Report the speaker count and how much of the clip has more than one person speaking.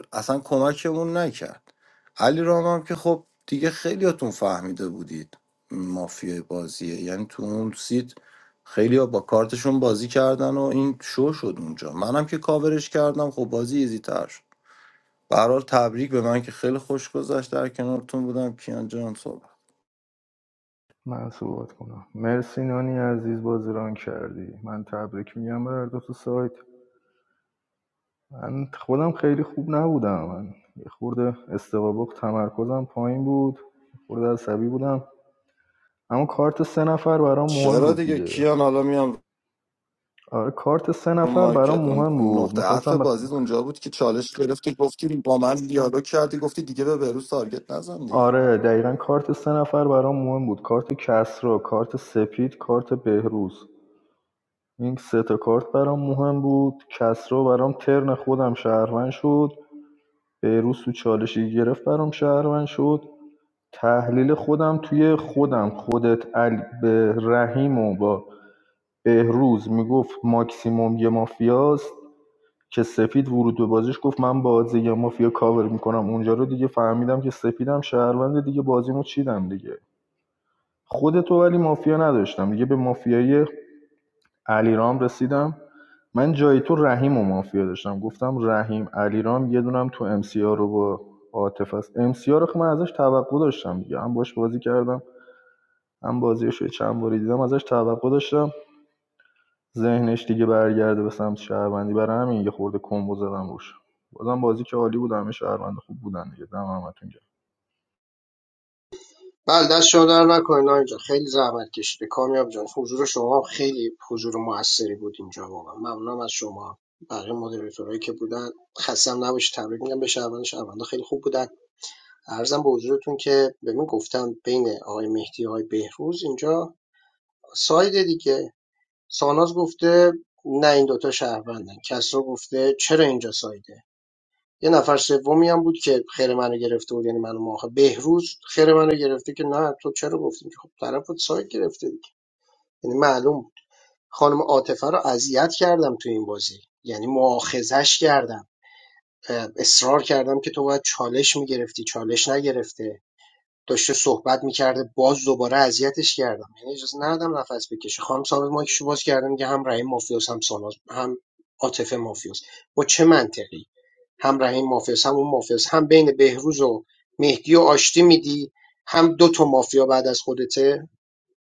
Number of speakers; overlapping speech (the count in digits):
3, about 2%